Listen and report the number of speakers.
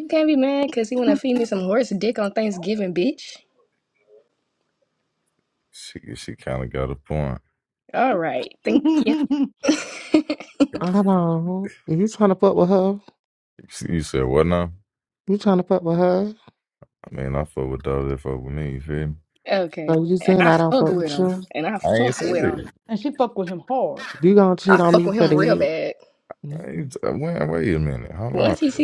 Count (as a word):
four